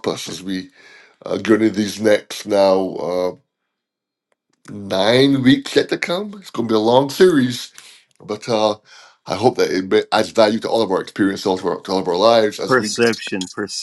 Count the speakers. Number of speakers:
2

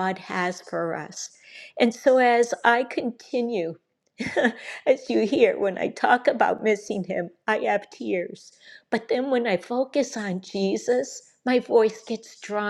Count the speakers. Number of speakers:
1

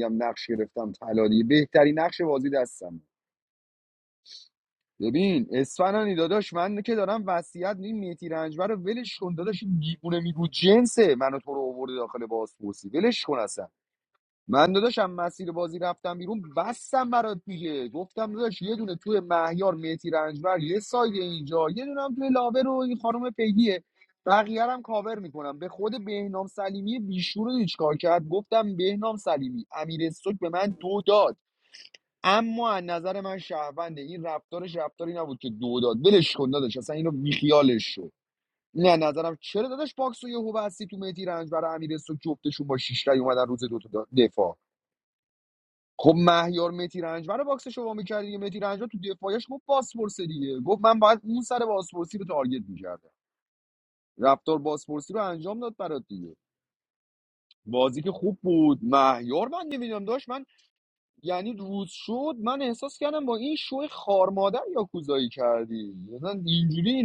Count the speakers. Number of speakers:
1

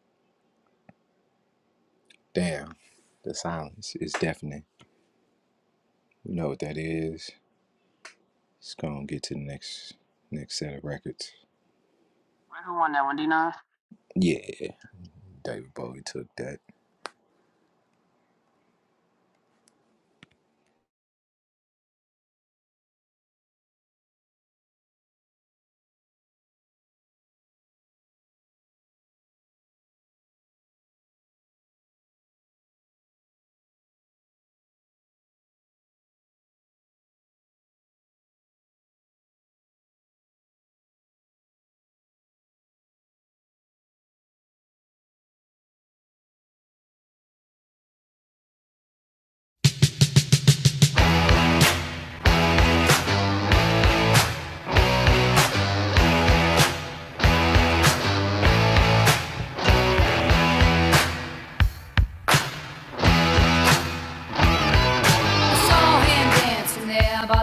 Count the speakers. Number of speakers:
3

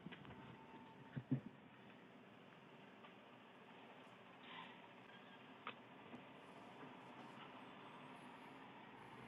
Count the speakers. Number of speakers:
0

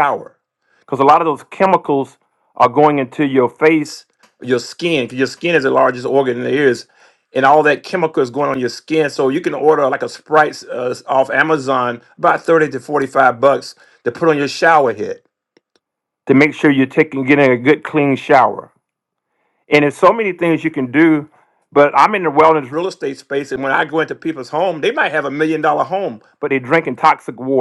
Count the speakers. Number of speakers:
1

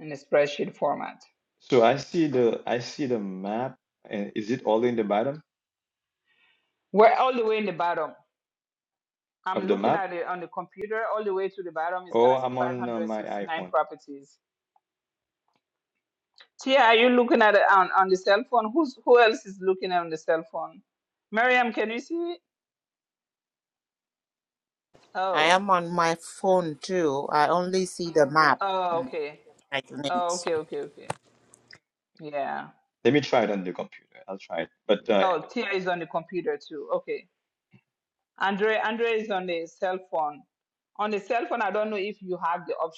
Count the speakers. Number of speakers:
3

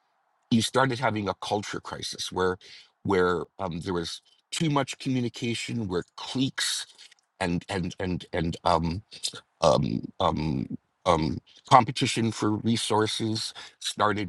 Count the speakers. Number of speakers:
1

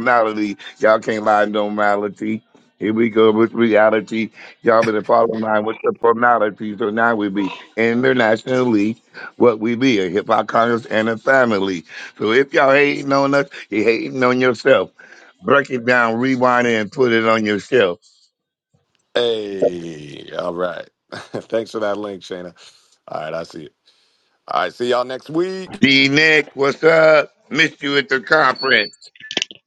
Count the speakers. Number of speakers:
2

